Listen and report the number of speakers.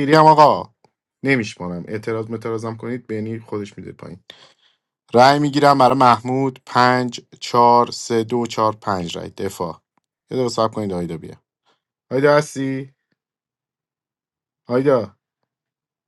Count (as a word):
one